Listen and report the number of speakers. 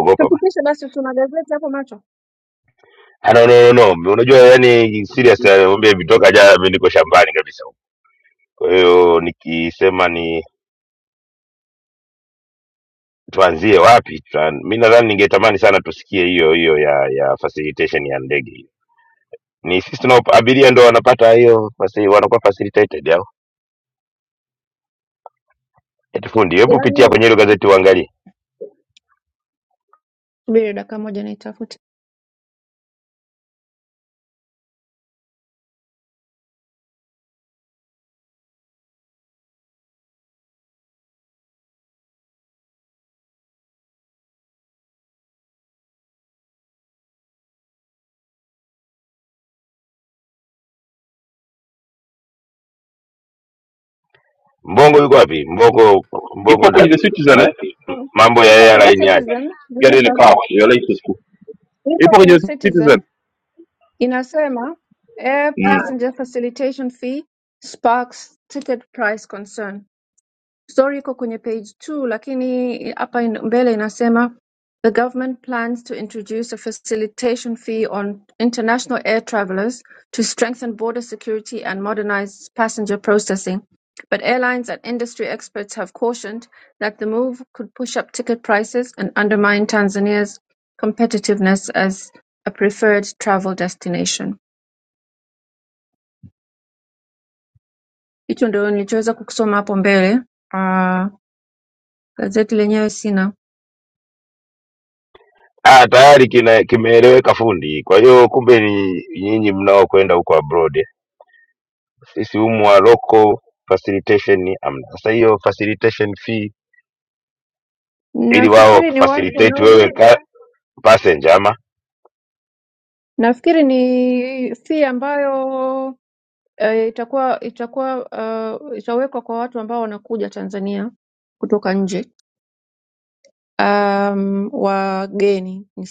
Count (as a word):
three